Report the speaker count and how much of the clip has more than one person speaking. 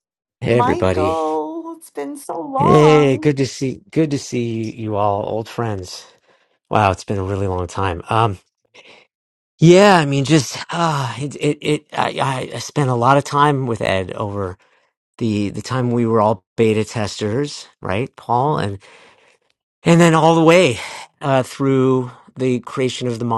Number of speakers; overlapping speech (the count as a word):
two, about 6%